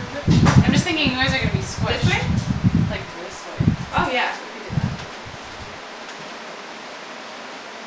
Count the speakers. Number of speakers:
two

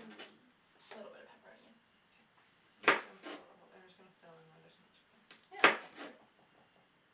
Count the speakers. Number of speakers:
two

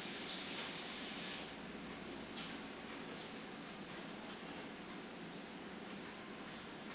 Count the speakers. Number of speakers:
zero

